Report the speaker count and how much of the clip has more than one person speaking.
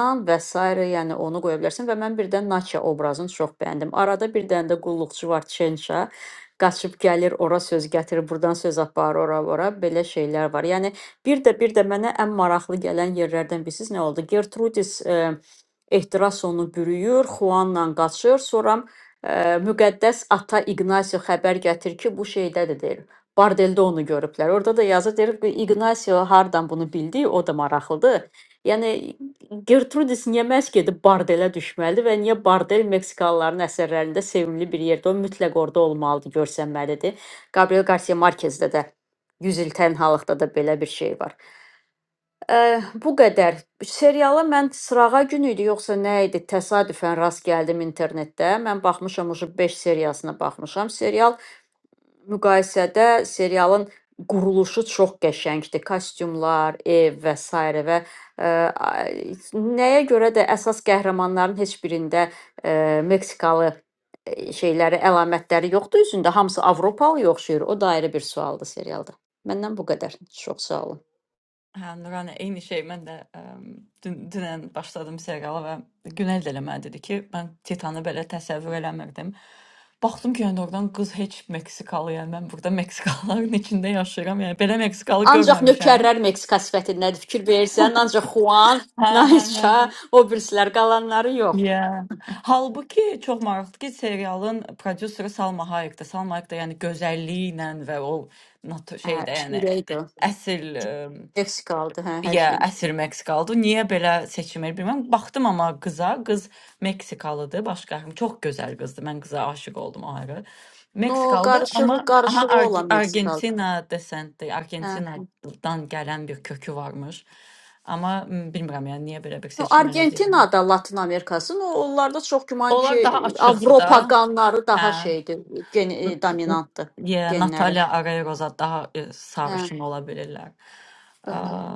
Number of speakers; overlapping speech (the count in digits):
2, about 7%